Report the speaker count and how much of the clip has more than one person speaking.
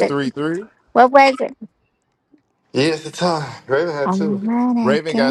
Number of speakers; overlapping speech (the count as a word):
three, about 20%